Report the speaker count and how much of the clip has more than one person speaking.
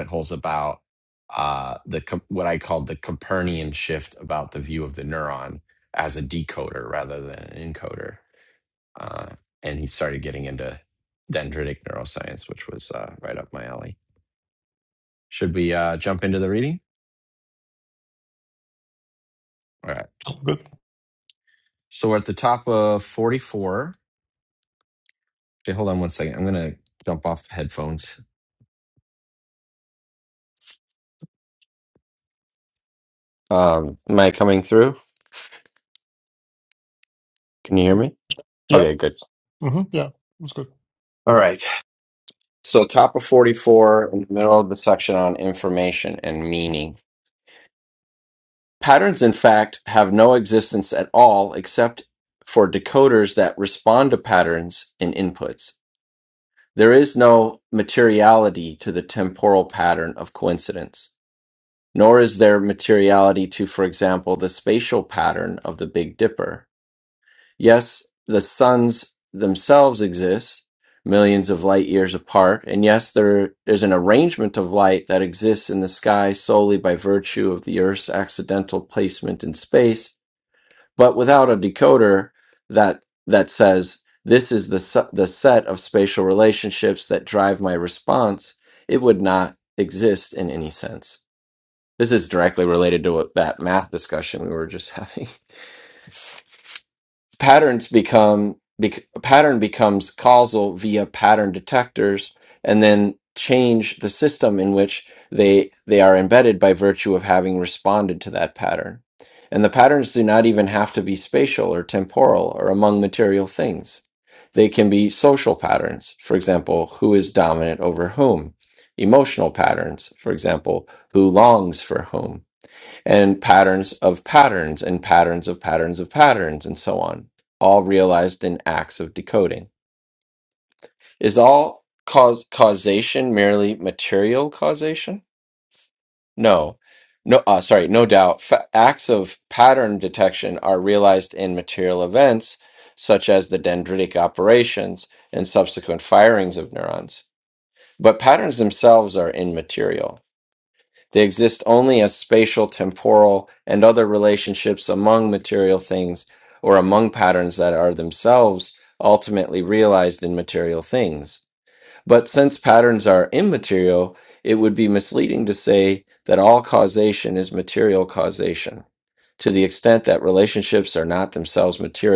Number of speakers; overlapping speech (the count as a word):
two, under 1%